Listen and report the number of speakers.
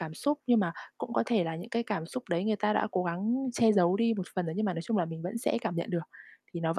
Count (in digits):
1